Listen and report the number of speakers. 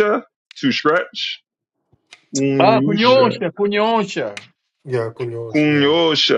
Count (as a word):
three